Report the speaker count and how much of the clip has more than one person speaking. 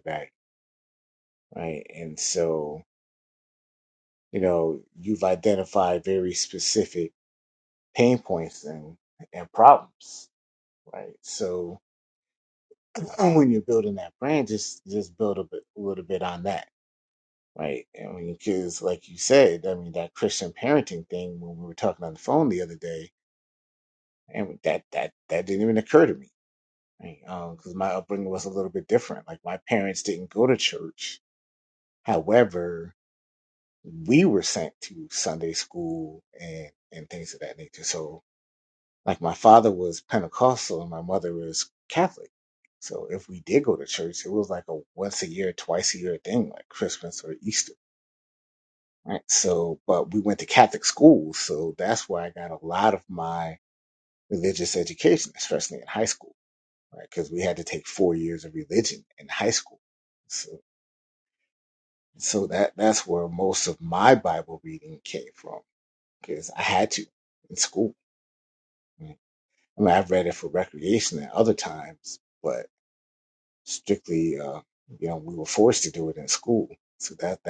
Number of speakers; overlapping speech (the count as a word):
one, no overlap